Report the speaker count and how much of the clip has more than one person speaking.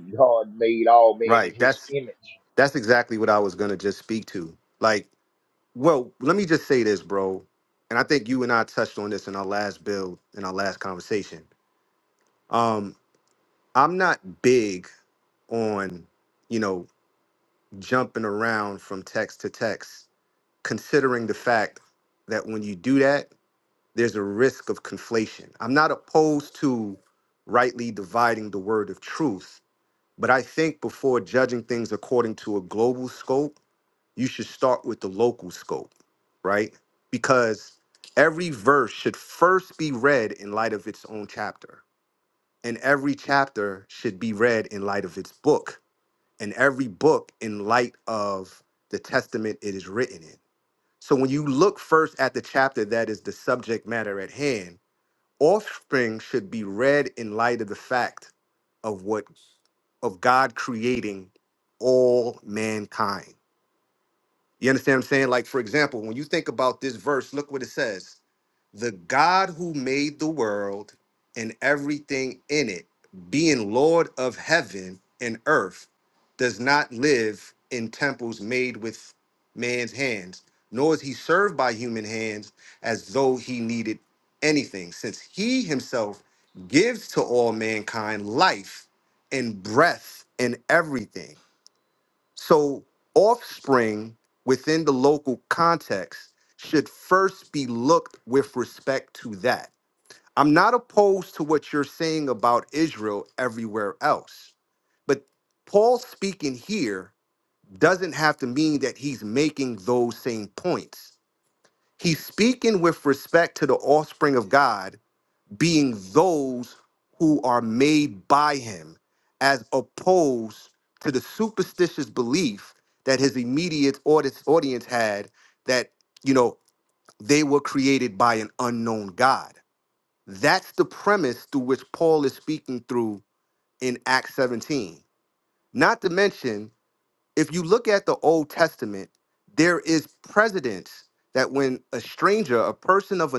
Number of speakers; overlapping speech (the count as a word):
two, under 1%